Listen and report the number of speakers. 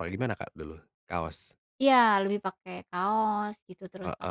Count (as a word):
two